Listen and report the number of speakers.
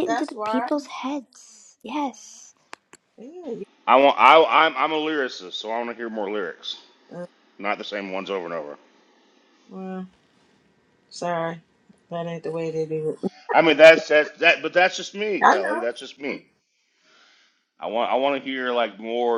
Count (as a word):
three